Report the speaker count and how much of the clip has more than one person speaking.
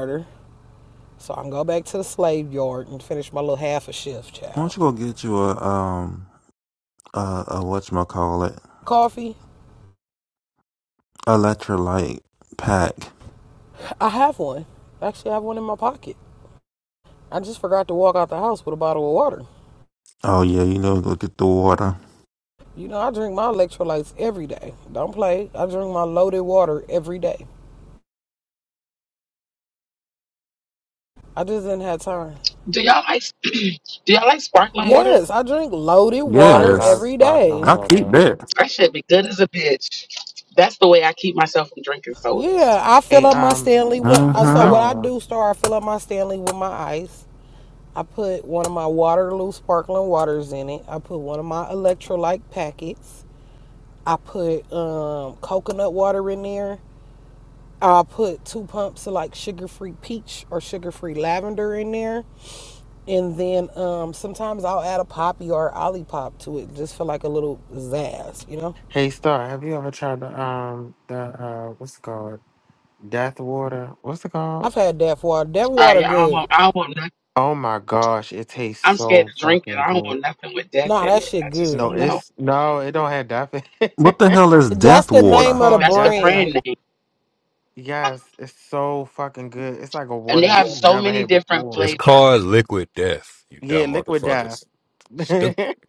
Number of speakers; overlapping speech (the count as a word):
five, about 13%